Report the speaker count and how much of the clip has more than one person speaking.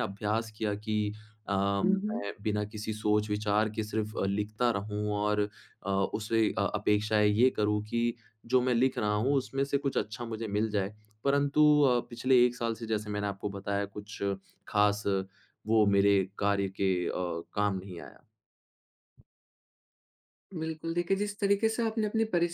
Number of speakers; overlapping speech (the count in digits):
2, under 1%